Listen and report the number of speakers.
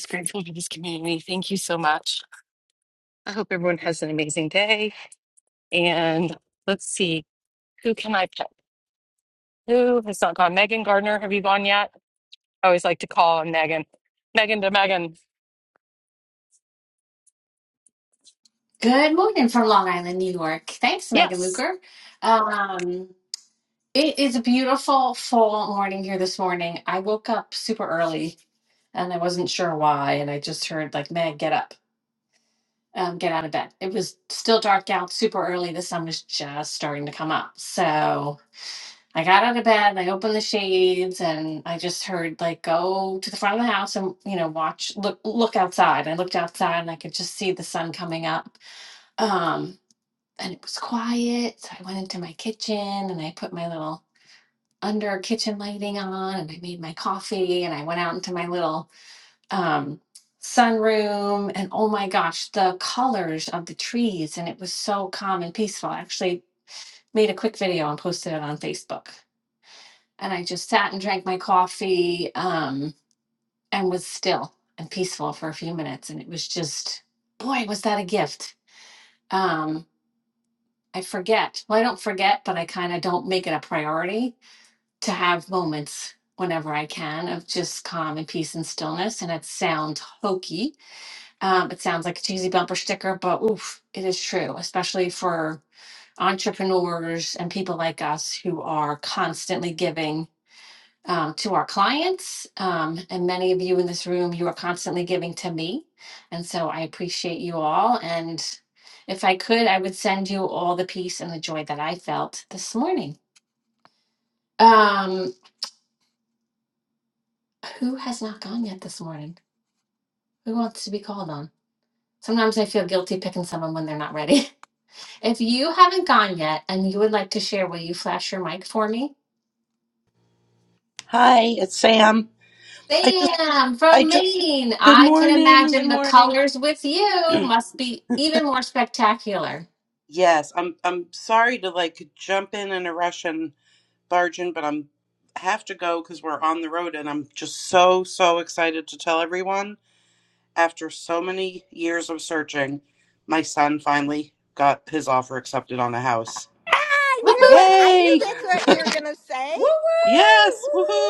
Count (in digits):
5